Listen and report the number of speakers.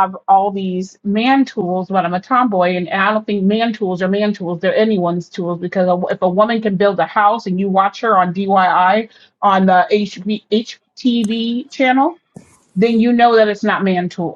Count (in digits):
1